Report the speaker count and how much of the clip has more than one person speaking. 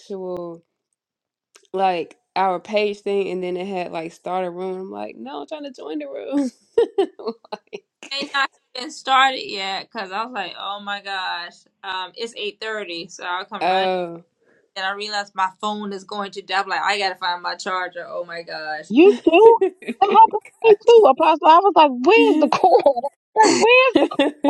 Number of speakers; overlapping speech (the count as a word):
three, about 3%